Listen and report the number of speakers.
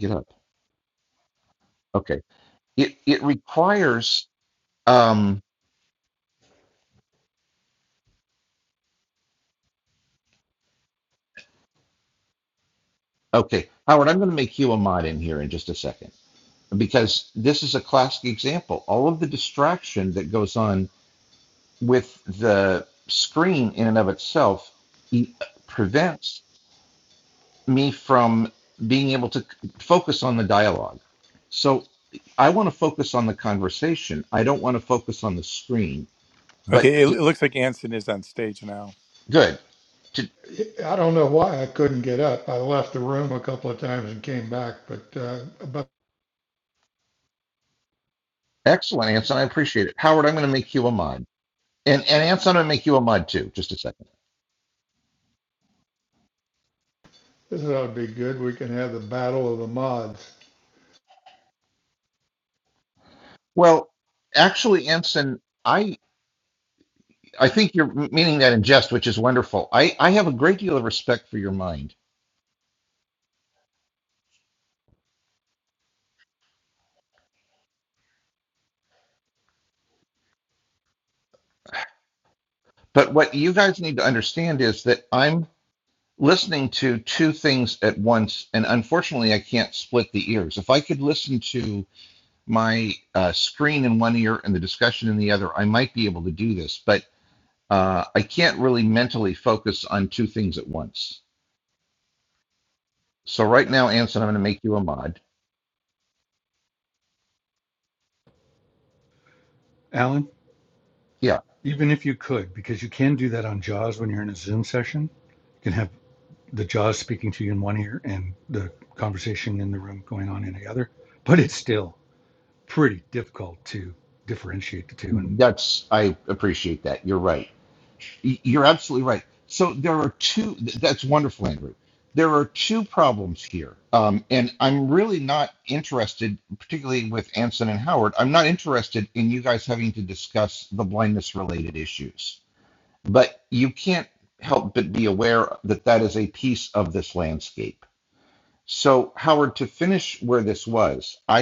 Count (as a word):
four